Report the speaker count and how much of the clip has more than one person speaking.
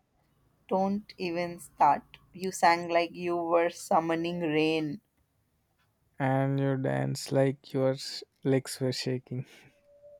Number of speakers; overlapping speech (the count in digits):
2, no overlap